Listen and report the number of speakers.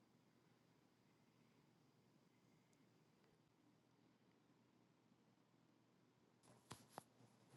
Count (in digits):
0